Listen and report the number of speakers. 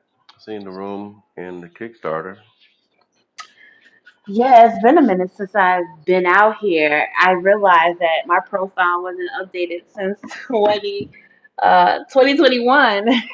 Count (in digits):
2